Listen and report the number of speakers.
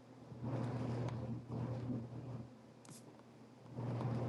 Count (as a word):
zero